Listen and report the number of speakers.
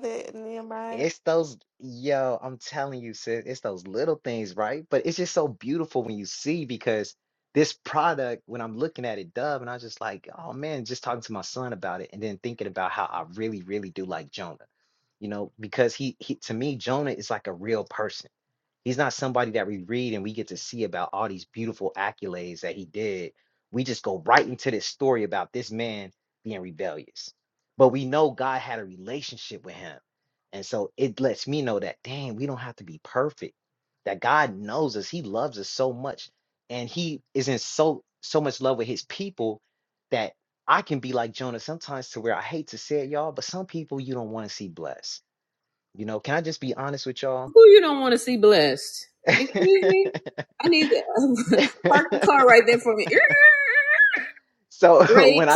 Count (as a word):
three